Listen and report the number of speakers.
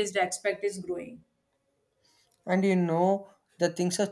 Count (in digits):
2